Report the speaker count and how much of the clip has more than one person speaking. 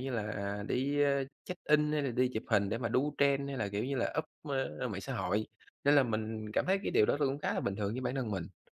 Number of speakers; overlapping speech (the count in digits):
1, no overlap